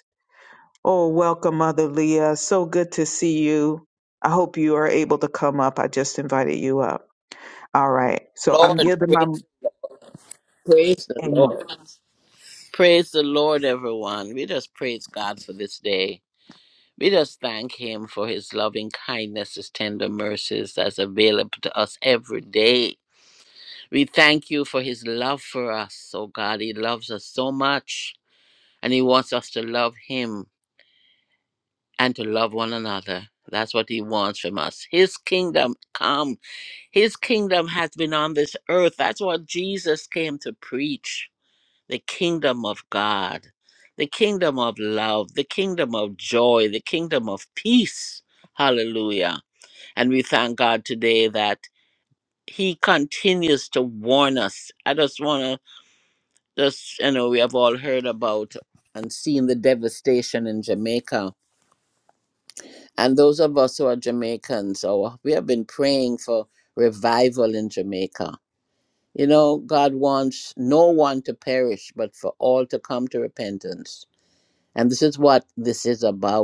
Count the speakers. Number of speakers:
2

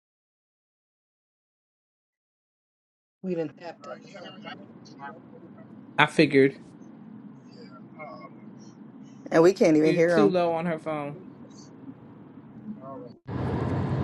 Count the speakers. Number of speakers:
4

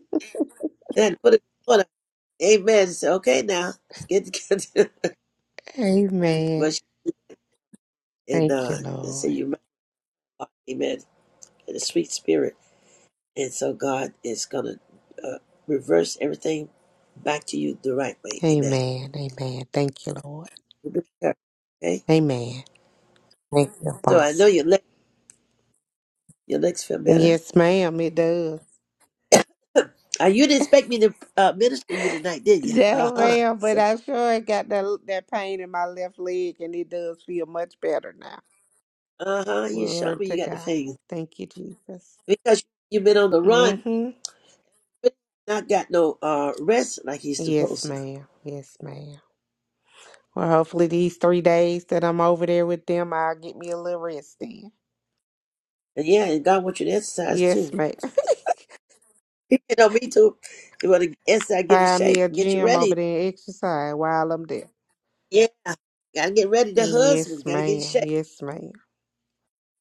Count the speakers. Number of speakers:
2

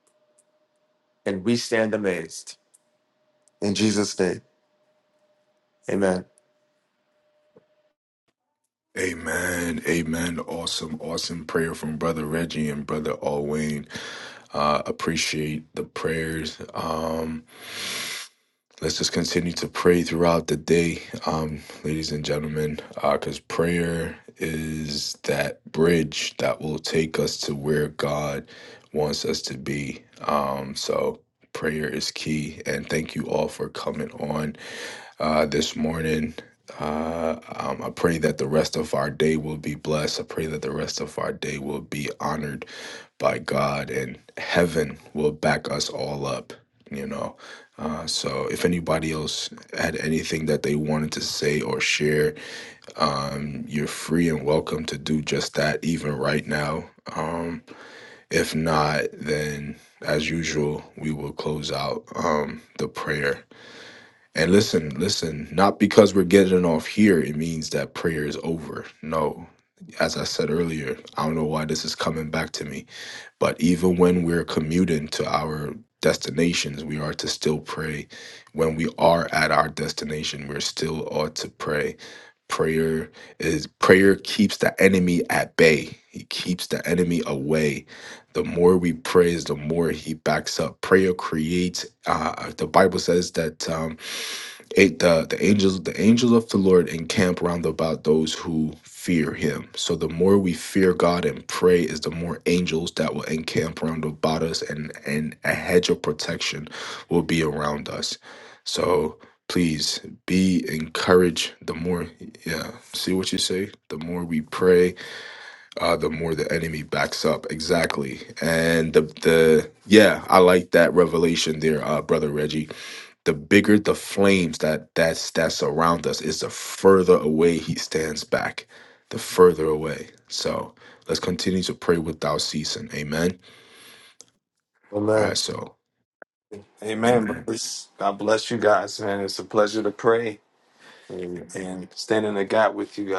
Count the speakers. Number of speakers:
3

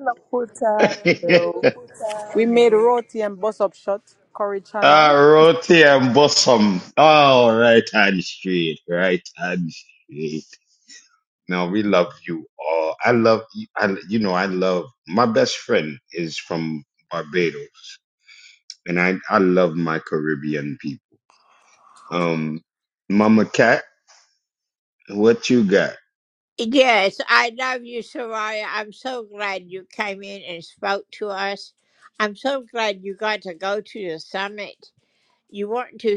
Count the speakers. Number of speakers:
4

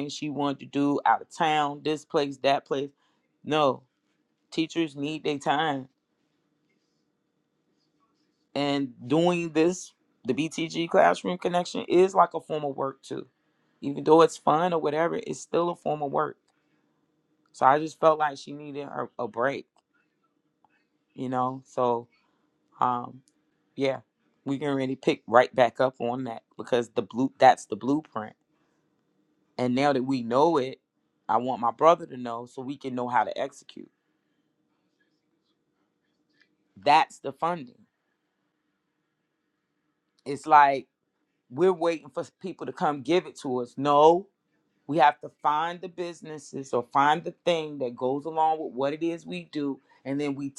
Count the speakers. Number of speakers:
1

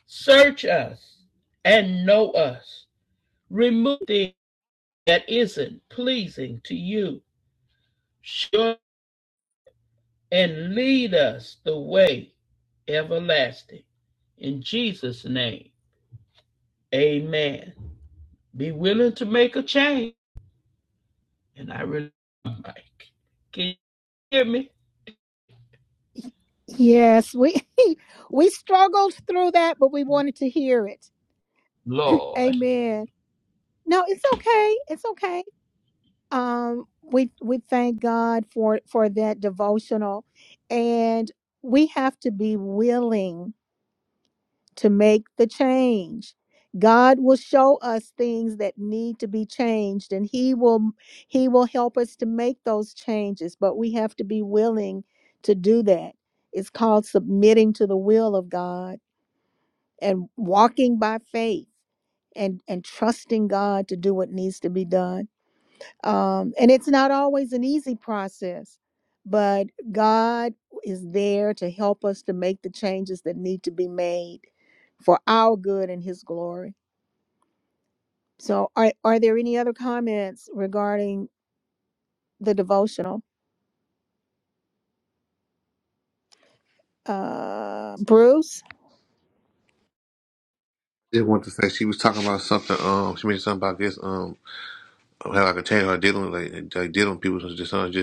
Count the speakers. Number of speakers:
3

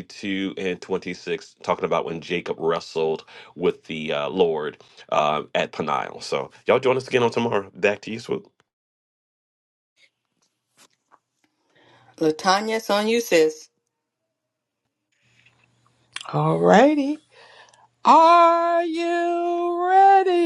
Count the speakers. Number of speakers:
3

